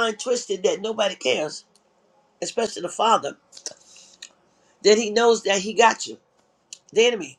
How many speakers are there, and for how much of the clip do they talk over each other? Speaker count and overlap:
1, no overlap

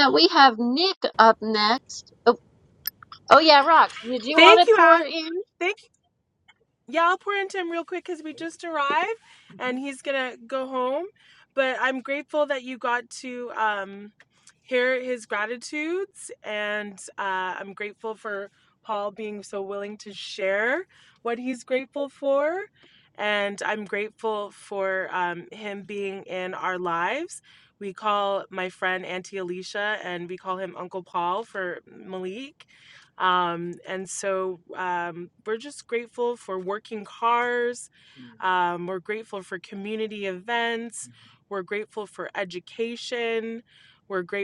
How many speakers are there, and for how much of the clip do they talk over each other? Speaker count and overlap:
2, about 2%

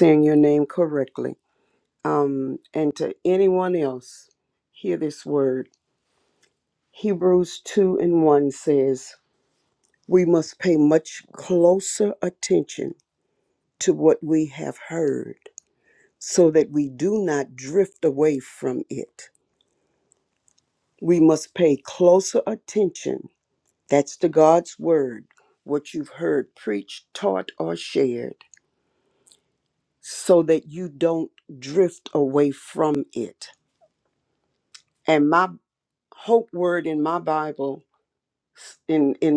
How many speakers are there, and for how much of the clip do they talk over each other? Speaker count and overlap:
1, no overlap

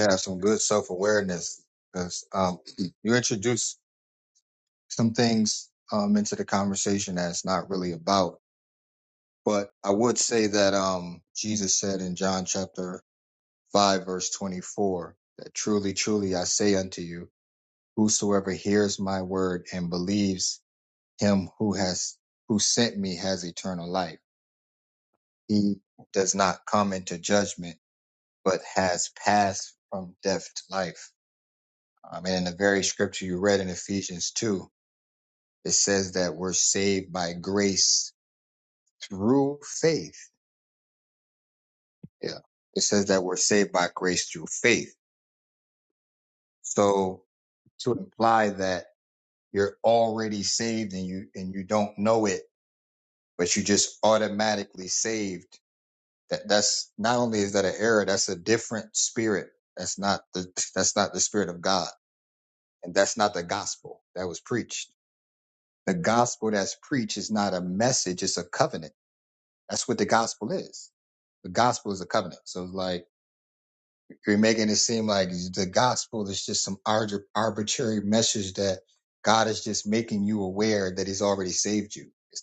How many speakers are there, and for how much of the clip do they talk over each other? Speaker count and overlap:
1, no overlap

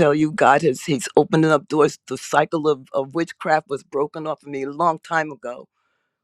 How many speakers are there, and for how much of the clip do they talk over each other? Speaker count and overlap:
1, no overlap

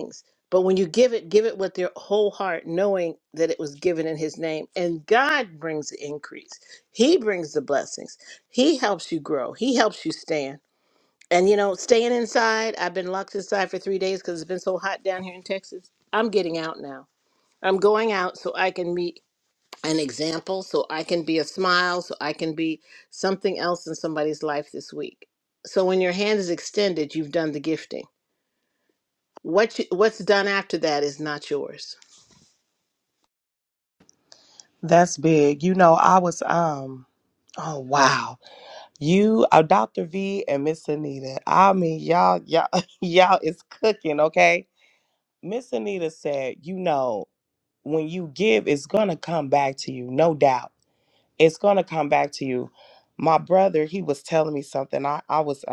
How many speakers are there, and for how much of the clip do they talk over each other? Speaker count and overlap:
2, no overlap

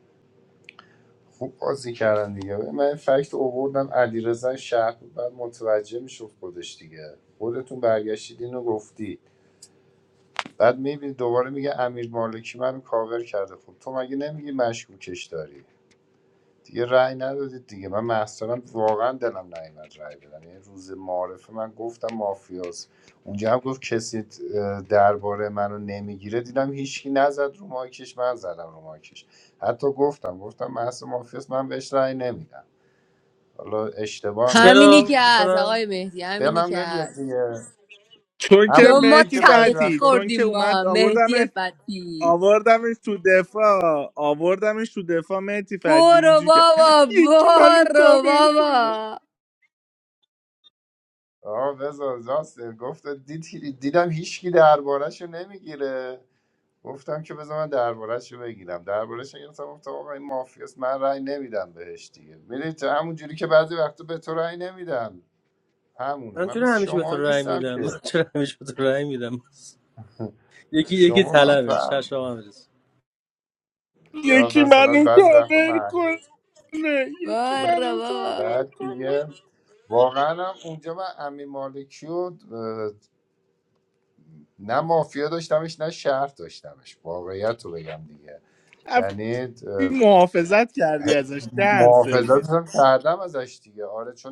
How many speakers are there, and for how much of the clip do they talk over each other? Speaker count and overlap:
4, about 16%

